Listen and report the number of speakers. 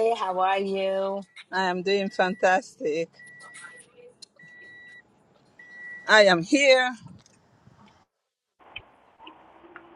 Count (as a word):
two